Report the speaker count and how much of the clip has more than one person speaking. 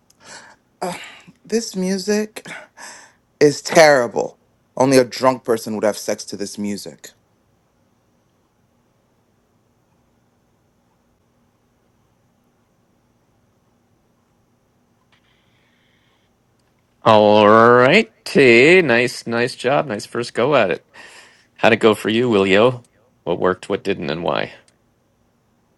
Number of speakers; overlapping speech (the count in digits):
2, no overlap